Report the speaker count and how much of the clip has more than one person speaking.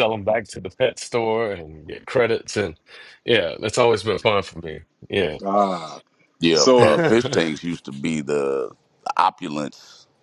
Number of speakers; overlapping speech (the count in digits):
3, about 4%